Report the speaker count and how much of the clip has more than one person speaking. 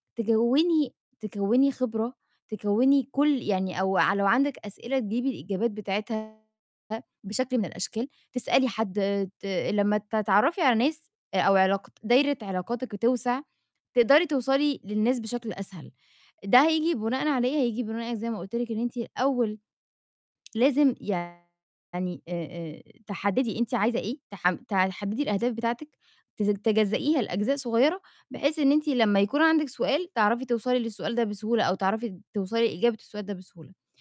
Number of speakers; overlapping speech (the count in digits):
1, no overlap